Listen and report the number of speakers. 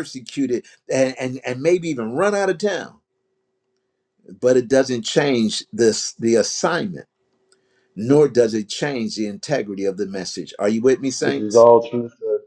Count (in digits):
2